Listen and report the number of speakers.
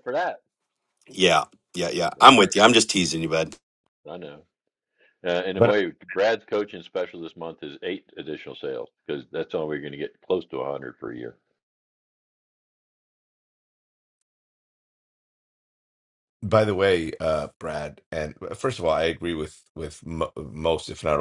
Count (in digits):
3